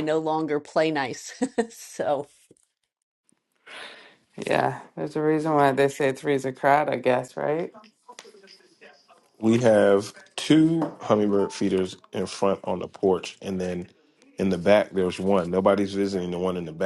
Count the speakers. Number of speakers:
3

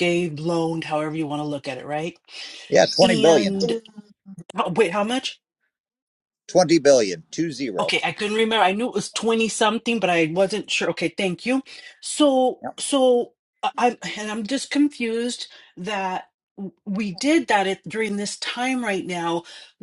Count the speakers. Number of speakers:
2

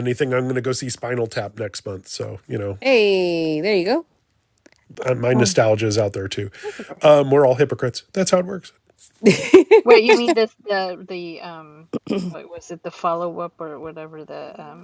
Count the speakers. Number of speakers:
3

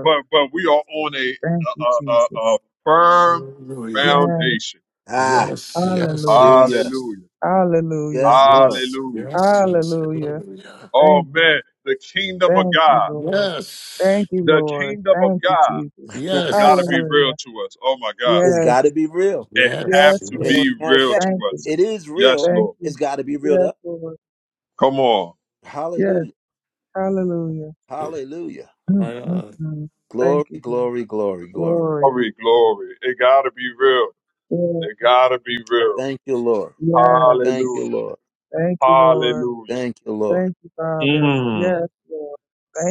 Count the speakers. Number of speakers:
4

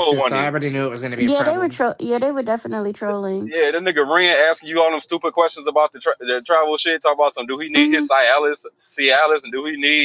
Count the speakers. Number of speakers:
3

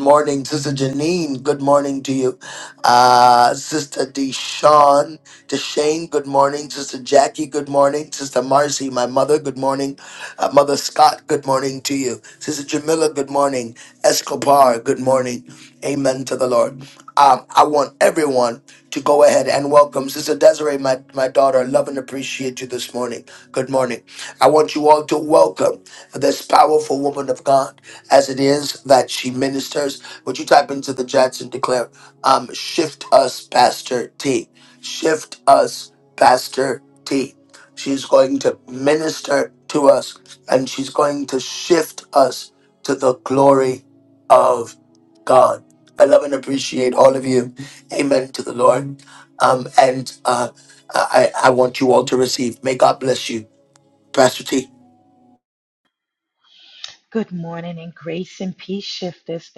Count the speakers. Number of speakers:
2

